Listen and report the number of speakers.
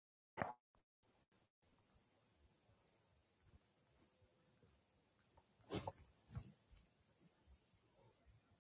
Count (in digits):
0